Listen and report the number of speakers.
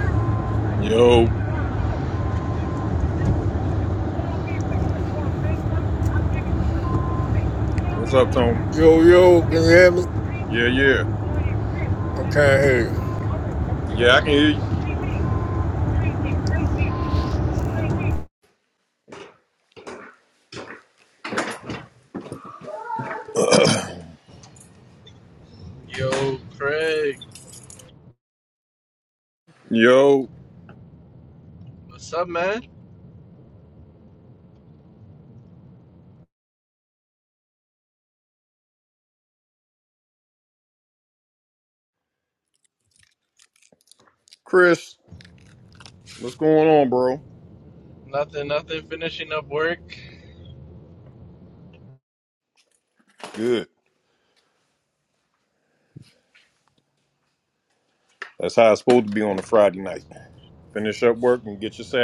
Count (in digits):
3